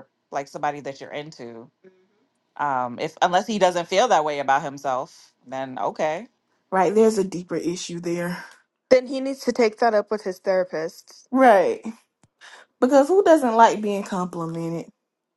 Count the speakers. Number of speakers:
three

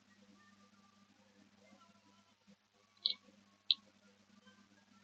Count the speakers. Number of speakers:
zero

